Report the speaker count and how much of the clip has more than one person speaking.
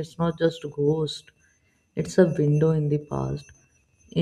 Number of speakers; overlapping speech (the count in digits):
1, no overlap